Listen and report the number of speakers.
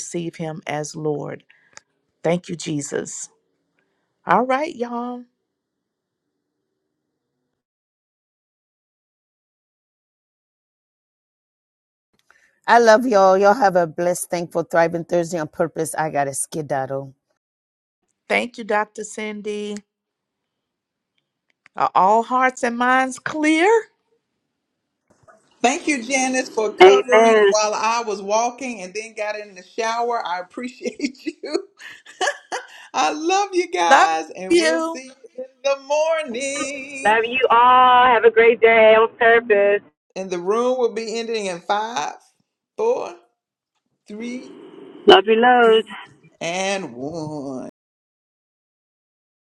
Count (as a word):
five